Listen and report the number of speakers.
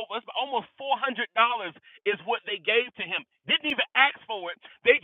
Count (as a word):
one